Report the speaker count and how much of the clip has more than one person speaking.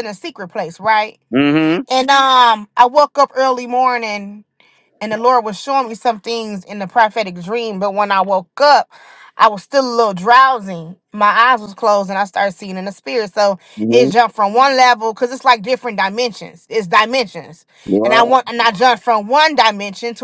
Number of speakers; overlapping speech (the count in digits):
2, about 2%